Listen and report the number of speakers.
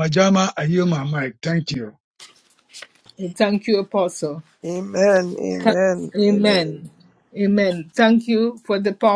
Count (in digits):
3